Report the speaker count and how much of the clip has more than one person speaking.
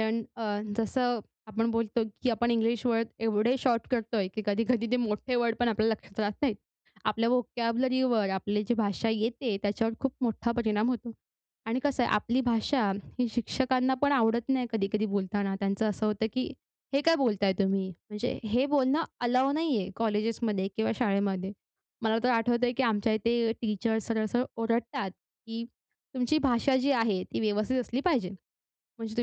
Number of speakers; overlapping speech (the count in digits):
1, no overlap